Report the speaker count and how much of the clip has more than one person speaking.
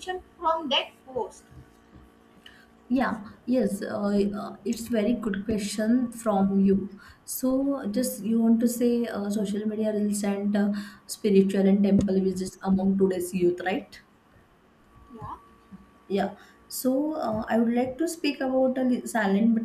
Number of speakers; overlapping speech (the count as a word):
two, no overlap